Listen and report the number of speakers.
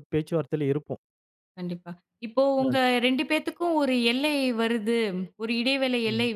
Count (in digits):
2